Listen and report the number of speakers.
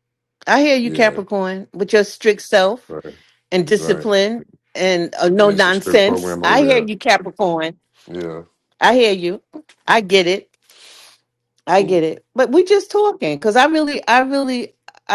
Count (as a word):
two